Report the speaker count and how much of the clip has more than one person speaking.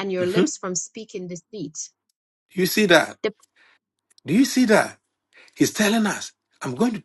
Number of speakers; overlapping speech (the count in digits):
2, about 5%